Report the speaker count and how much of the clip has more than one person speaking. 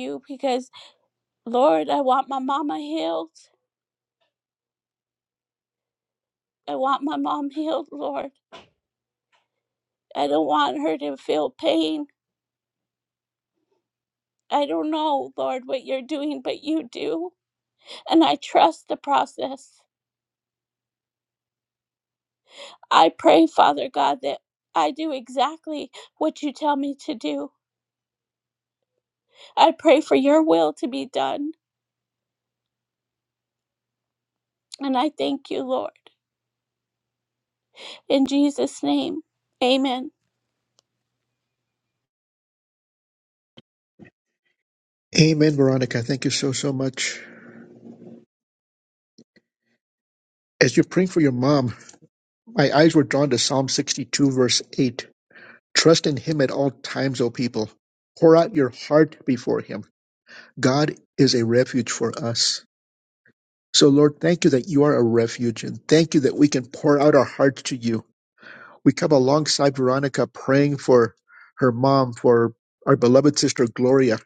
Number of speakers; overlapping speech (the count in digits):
2, no overlap